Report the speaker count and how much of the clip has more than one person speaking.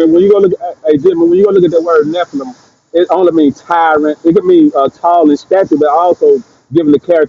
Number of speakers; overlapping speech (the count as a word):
one, no overlap